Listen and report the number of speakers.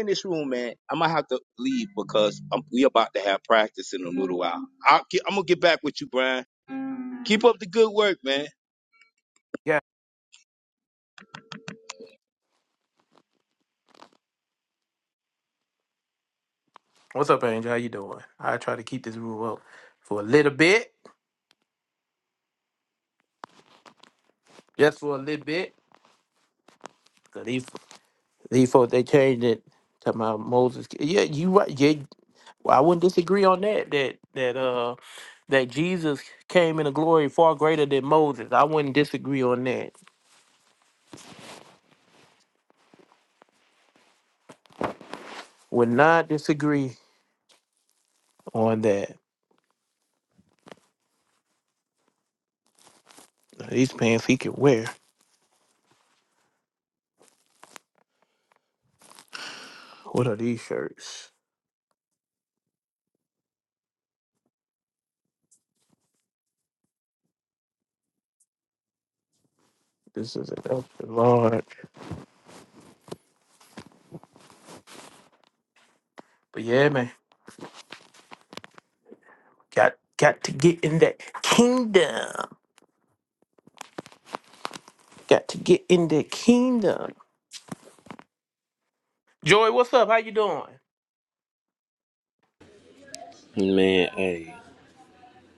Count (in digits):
3